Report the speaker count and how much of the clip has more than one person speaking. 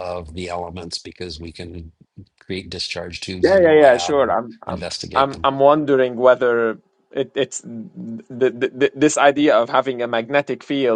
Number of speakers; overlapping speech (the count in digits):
2, about 12%